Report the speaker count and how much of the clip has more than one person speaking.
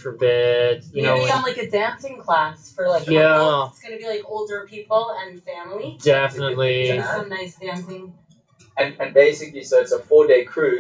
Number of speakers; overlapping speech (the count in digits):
3, about 24%